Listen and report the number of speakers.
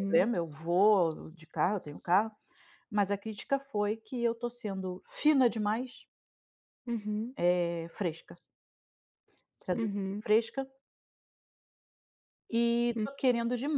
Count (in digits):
2